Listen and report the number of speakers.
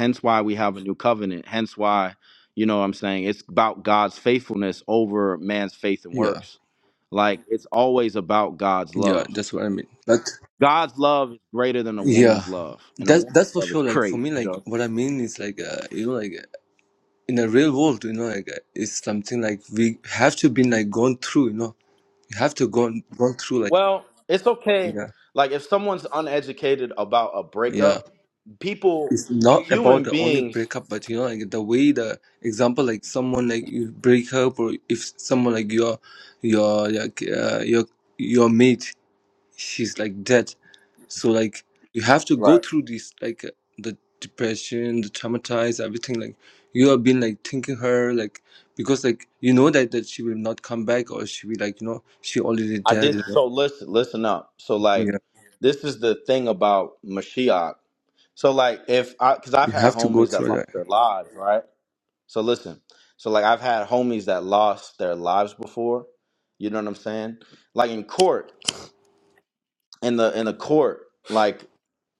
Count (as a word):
two